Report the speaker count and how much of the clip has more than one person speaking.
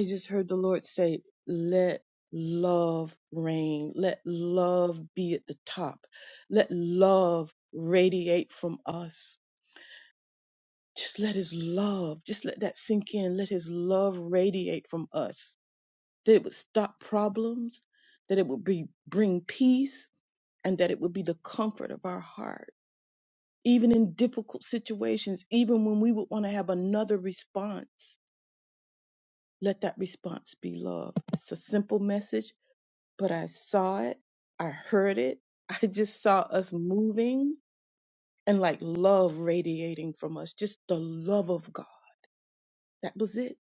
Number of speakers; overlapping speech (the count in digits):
1, no overlap